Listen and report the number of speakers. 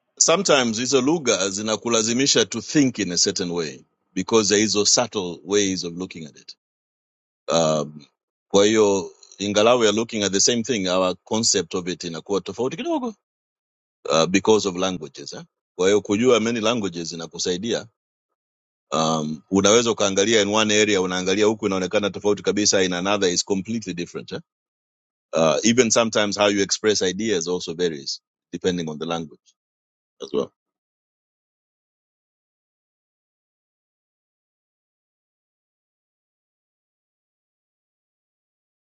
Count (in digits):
1